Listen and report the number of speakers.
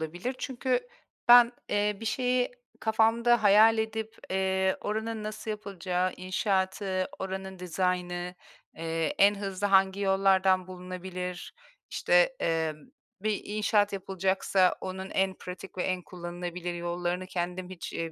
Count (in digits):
1